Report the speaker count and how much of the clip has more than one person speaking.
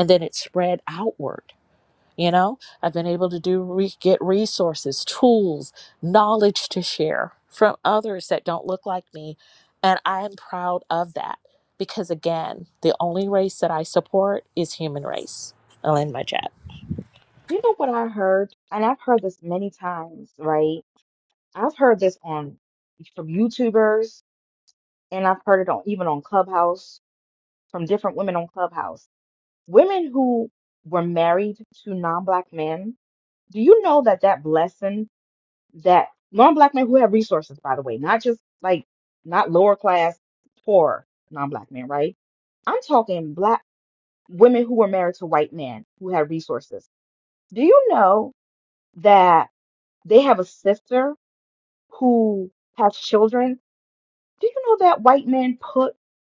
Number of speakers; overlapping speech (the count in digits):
2, no overlap